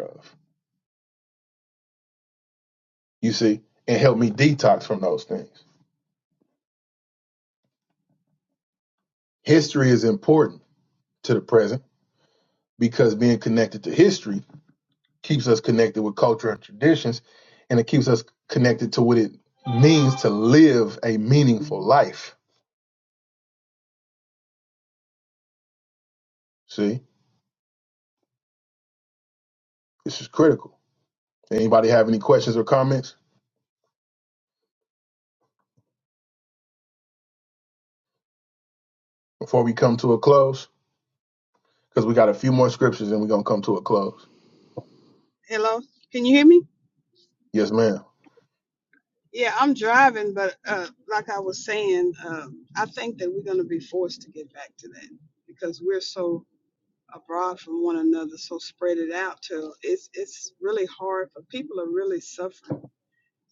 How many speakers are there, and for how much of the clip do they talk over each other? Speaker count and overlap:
two, no overlap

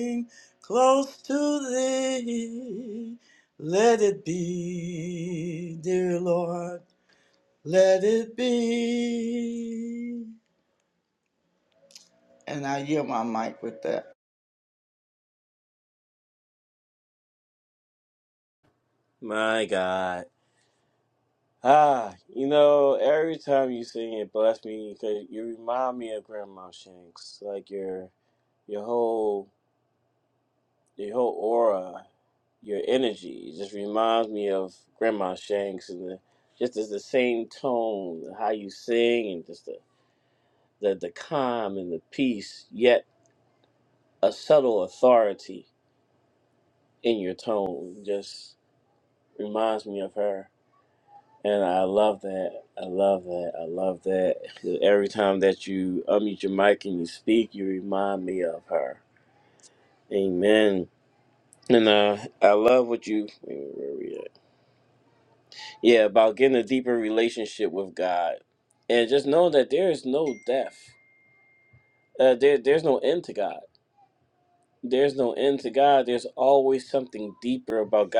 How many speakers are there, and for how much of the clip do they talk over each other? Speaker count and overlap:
two, no overlap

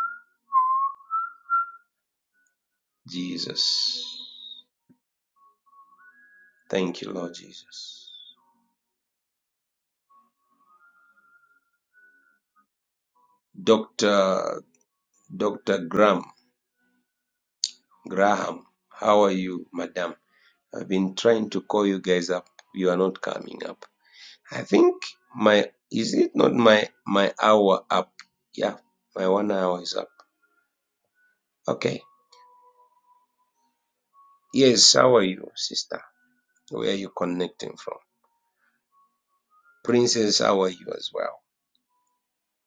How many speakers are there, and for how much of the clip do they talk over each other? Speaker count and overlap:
one, no overlap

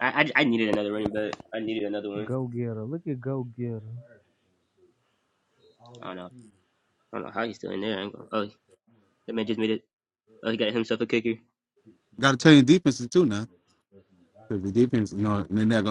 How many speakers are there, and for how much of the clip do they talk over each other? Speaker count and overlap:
three, about 1%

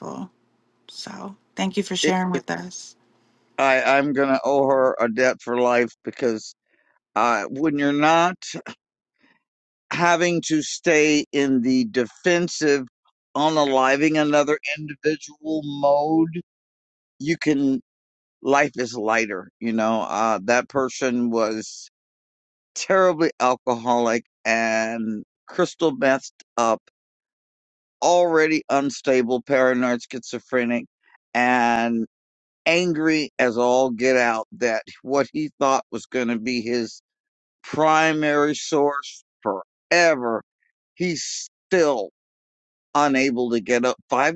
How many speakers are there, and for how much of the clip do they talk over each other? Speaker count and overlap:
two, under 1%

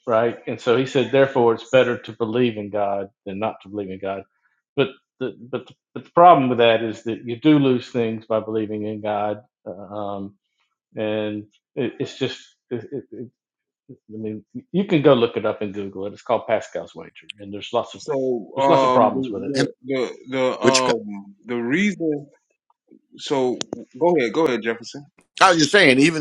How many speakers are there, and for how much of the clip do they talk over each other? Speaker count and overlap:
three, about 5%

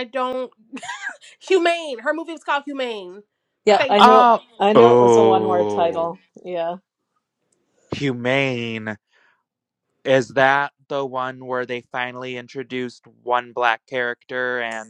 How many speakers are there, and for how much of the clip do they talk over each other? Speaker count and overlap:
three, about 10%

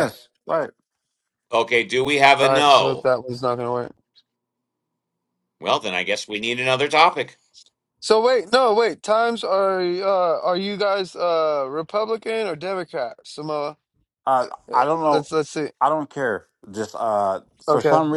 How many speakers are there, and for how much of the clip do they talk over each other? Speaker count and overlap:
three, about 10%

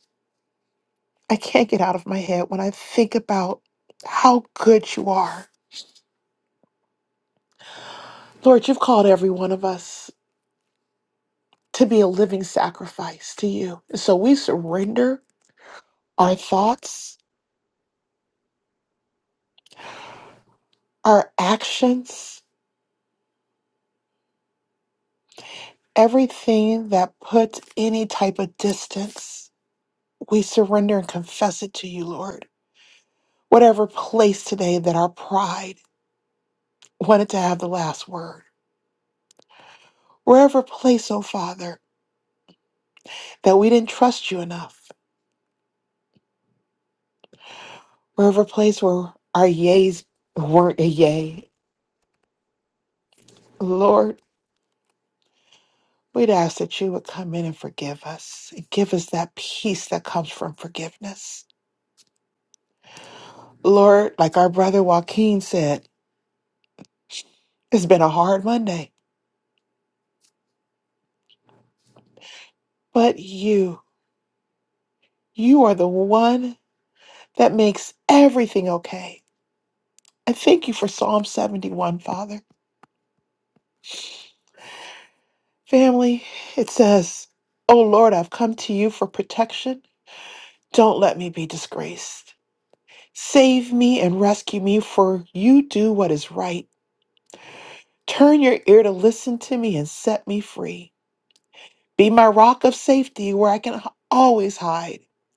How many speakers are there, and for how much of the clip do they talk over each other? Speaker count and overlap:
one, no overlap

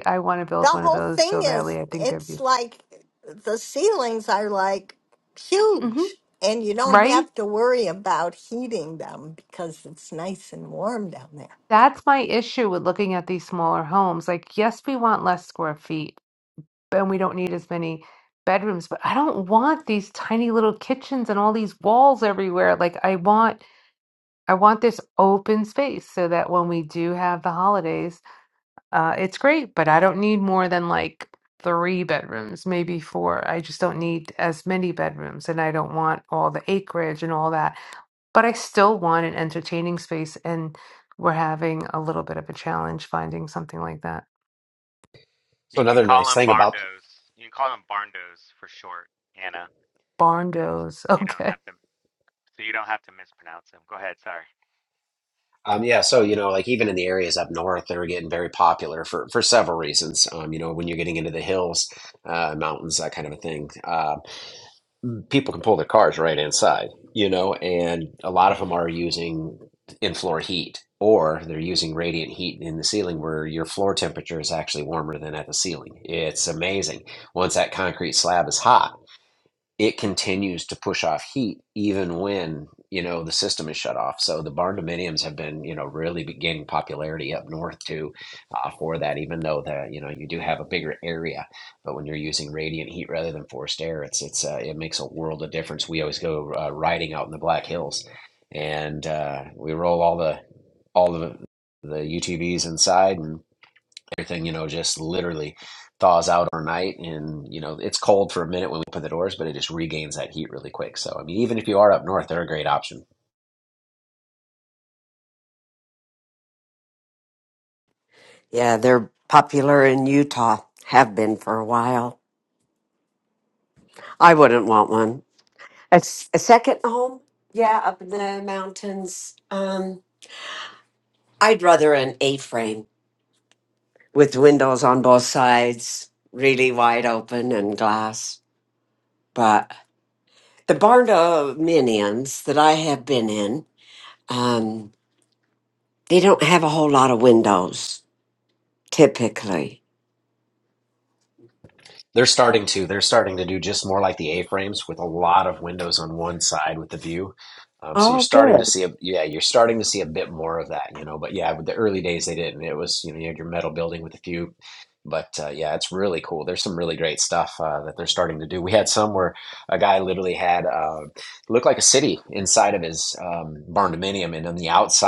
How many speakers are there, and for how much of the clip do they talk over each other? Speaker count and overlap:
five, about 3%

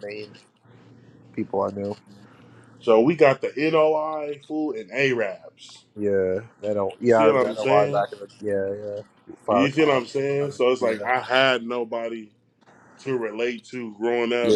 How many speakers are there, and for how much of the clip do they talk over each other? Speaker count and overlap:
two, about 13%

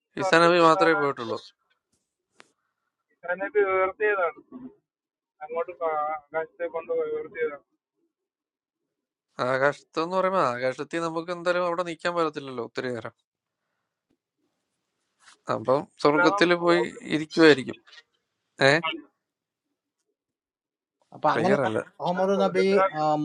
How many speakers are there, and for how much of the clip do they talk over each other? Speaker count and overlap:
three, about 13%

